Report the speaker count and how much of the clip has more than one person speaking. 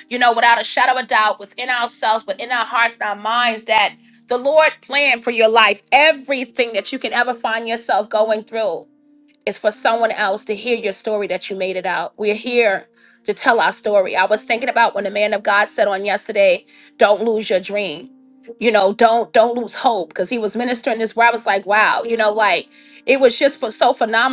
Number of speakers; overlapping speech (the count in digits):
1, no overlap